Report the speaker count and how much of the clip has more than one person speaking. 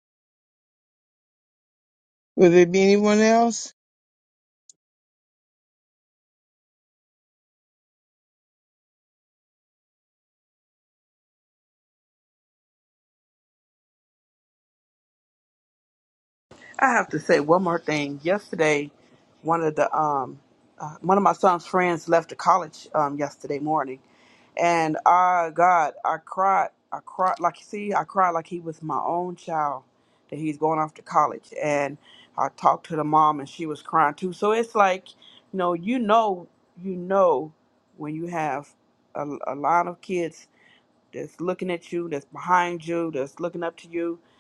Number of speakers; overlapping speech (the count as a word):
two, no overlap